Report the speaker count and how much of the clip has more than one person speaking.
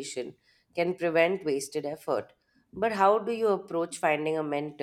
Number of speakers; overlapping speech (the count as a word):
one, no overlap